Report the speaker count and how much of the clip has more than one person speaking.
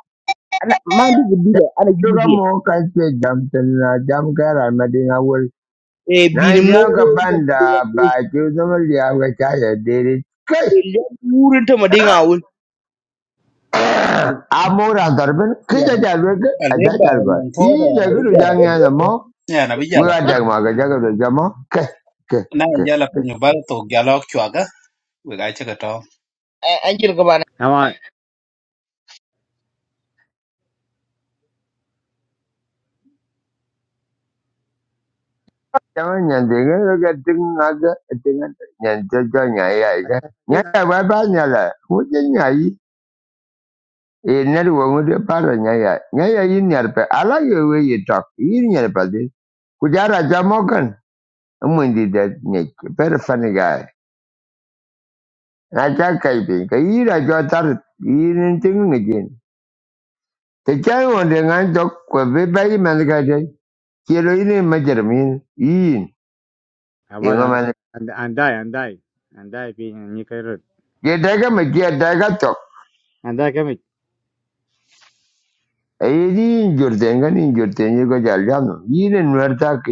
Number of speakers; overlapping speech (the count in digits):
4, about 7%